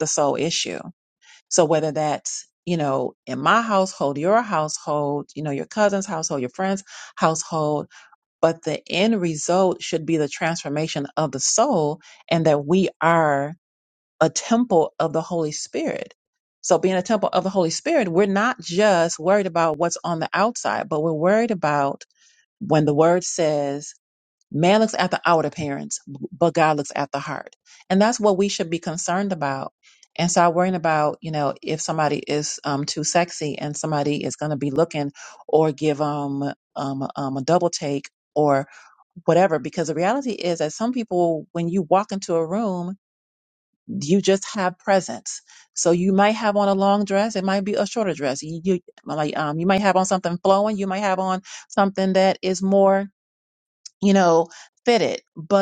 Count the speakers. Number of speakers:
one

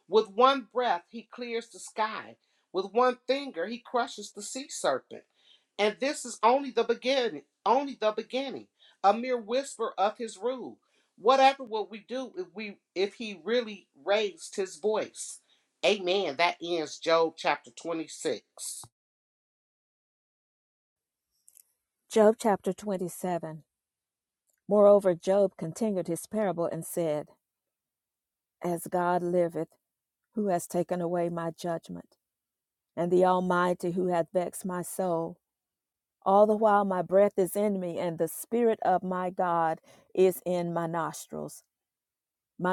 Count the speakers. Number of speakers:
two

